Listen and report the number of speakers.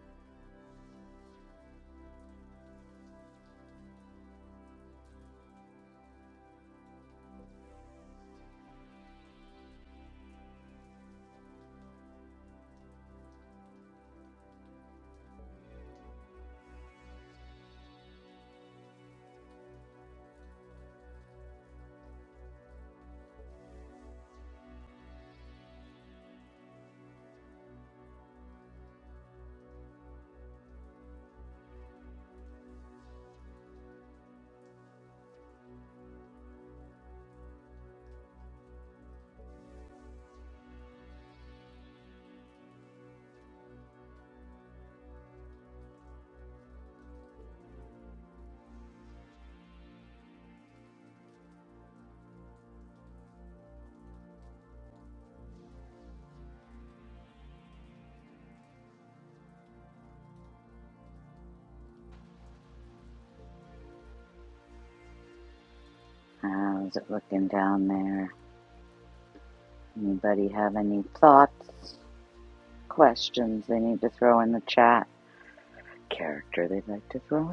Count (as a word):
one